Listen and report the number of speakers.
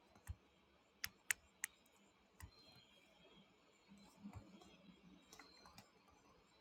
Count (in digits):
0